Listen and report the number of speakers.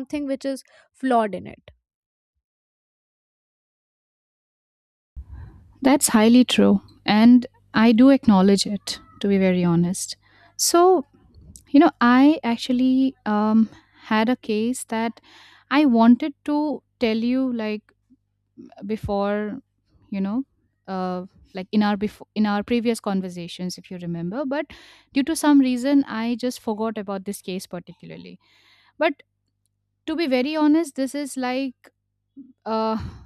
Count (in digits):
2